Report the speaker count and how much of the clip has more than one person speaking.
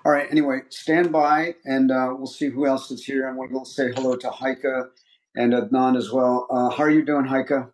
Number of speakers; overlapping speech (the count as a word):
one, no overlap